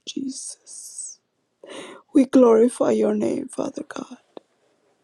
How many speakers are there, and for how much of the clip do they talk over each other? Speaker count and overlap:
1, no overlap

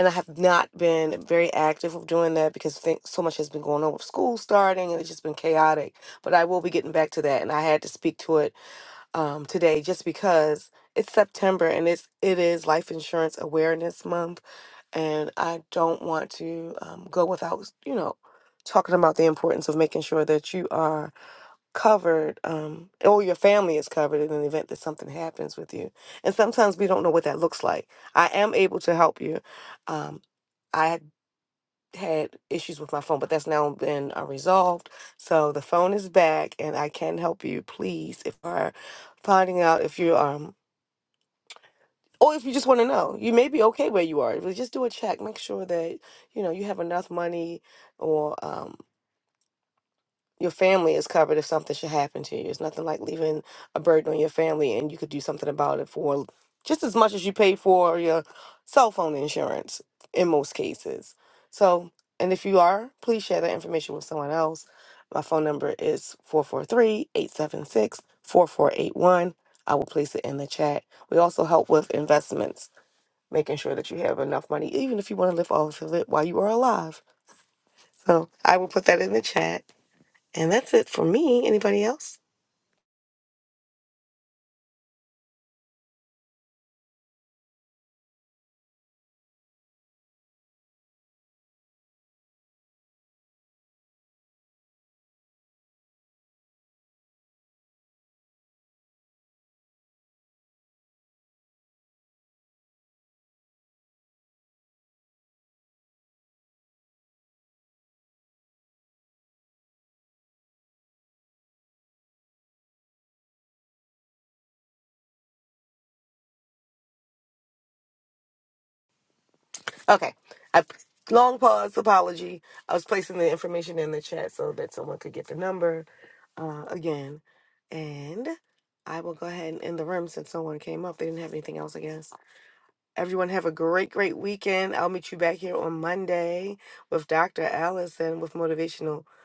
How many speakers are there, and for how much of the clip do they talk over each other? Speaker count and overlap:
1, no overlap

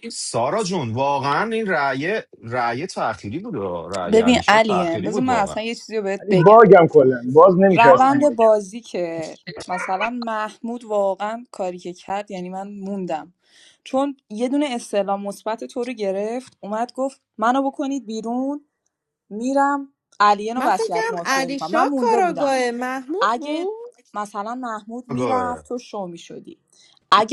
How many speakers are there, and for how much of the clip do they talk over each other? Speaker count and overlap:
4, about 18%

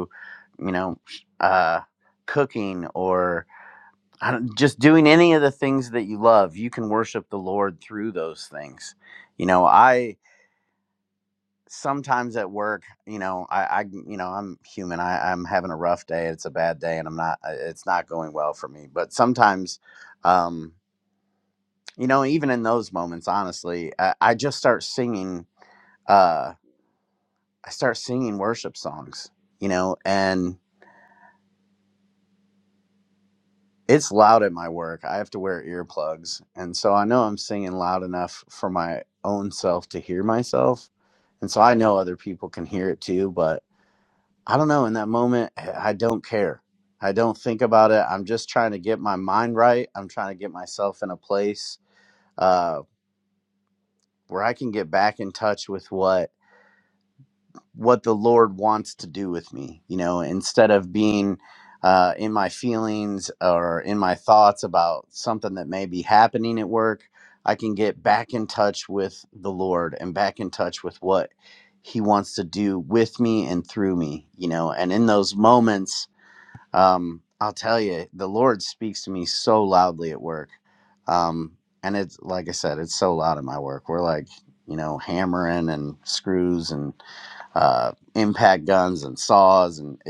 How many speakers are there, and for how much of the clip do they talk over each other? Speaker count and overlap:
1, no overlap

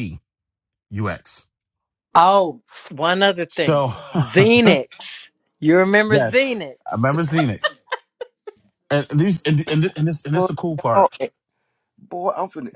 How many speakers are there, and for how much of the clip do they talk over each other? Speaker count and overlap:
3, about 9%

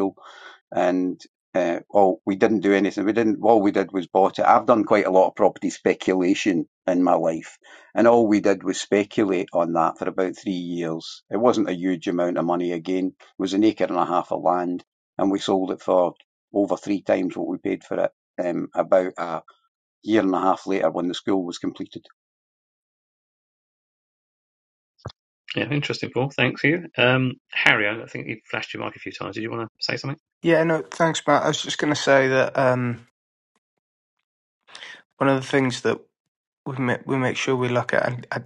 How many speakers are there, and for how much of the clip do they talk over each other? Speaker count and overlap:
3, no overlap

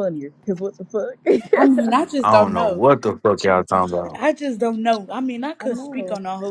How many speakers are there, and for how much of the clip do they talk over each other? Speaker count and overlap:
3, about 19%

